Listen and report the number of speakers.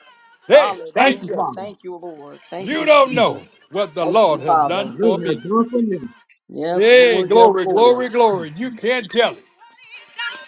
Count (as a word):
three